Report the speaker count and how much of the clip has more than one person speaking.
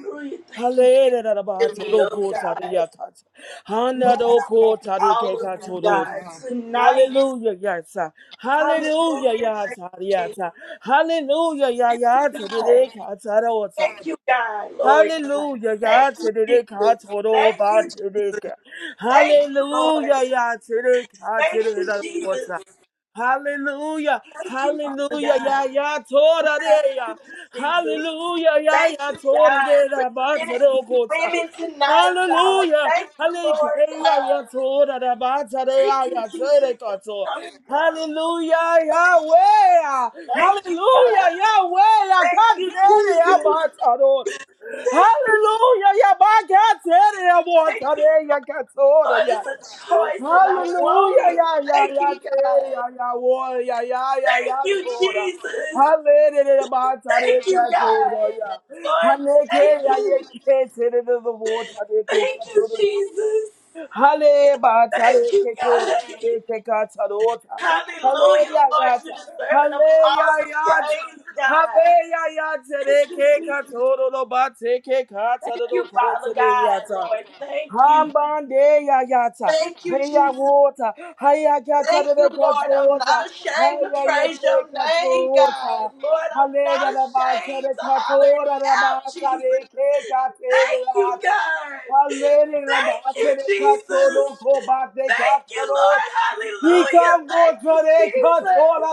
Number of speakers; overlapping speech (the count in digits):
2, about 50%